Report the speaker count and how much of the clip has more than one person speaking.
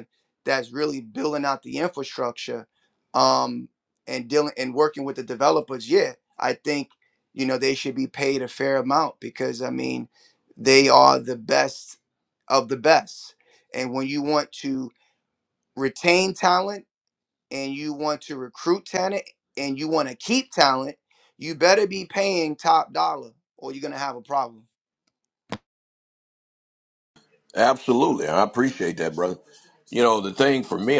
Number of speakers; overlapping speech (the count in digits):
2, no overlap